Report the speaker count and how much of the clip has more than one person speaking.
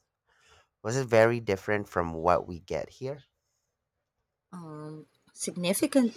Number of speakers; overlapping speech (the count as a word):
two, no overlap